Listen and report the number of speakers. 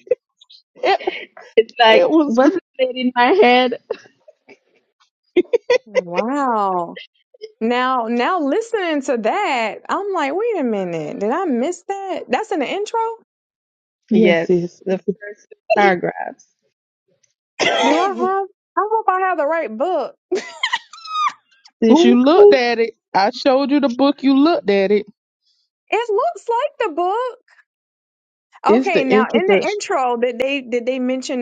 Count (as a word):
three